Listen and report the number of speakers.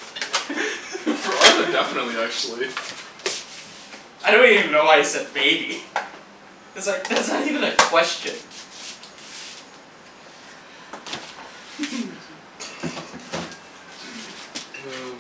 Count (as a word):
two